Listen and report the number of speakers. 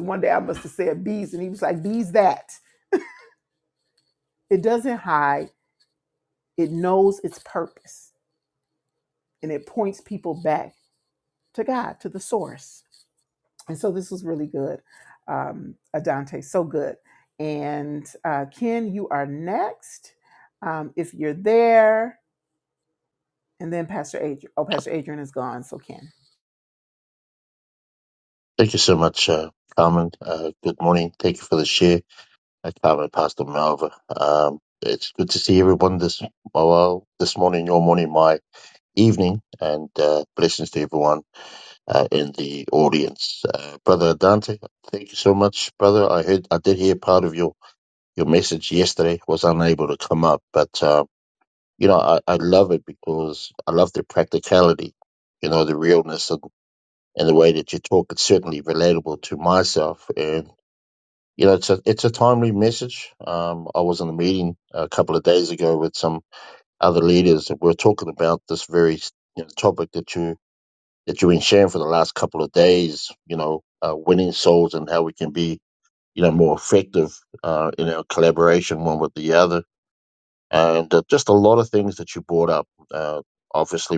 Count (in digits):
2